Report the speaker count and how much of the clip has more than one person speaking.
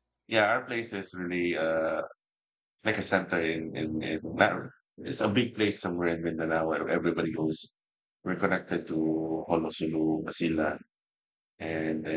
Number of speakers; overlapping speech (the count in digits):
1, no overlap